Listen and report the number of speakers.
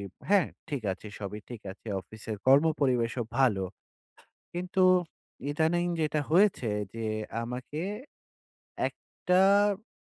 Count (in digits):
1